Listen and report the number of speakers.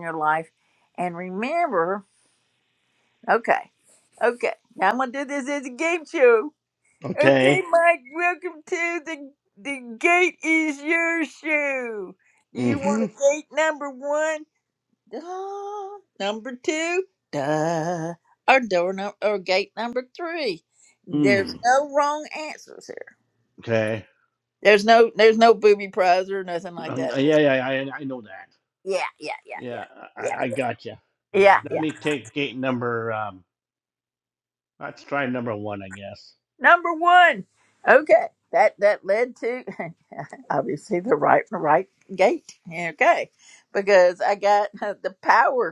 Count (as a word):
two